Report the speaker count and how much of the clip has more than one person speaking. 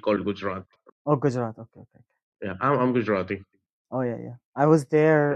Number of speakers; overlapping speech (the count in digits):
2, about 1%